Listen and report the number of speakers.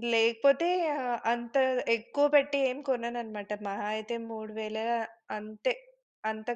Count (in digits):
1